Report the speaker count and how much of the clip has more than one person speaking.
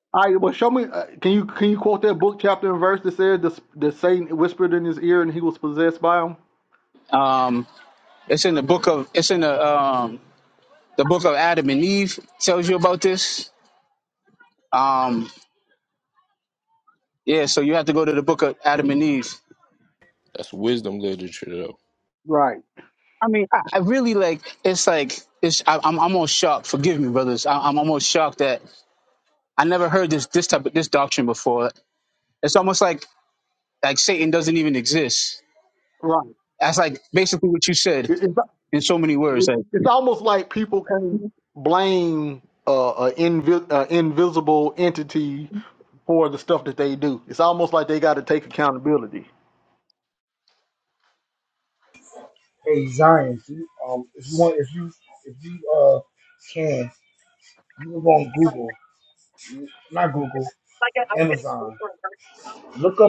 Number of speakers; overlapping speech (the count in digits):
4, about 1%